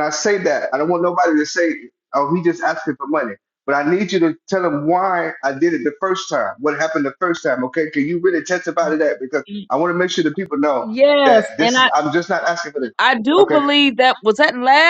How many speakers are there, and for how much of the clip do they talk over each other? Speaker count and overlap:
2, about 7%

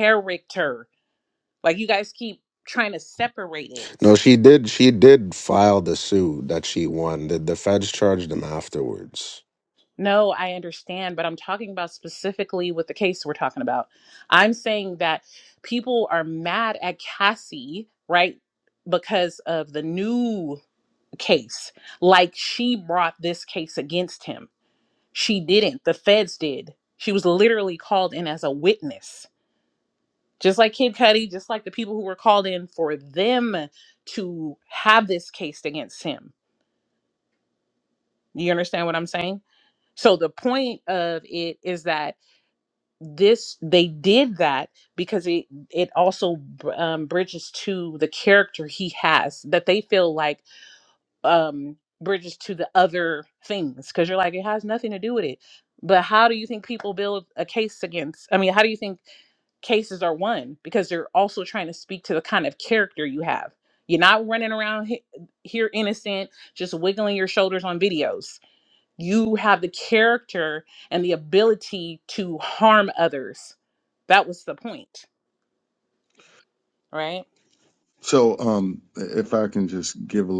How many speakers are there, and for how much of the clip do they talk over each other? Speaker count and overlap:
3, no overlap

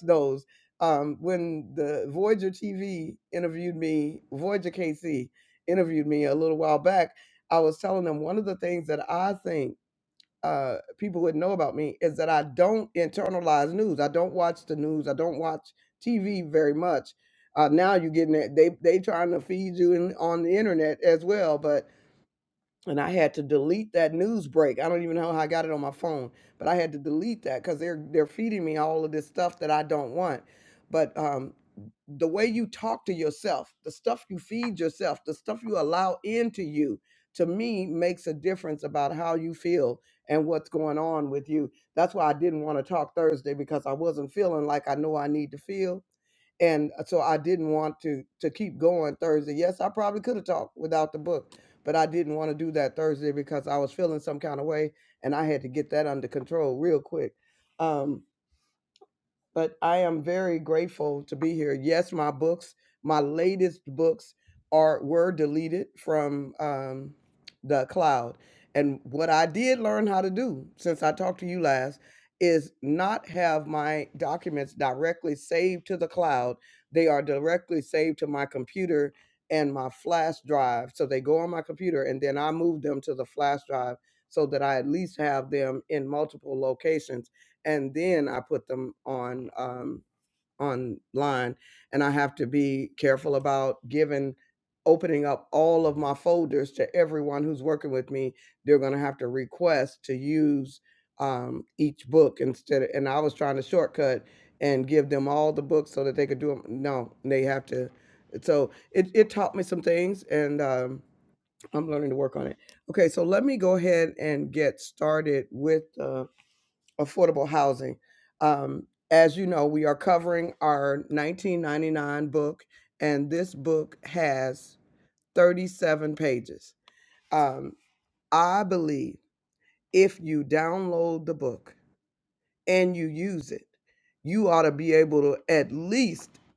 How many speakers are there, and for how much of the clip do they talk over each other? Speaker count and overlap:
1, no overlap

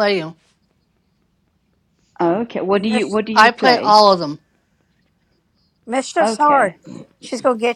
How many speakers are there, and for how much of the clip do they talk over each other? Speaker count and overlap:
3, about 18%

